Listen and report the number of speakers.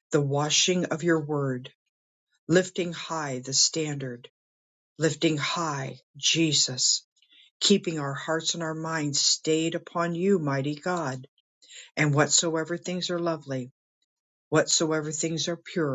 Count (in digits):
1